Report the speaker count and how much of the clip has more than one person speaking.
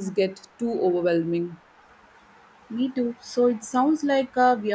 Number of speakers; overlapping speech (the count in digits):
2, no overlap